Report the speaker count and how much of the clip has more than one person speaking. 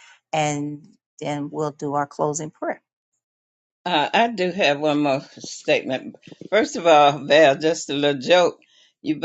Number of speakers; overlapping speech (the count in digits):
2, no overlap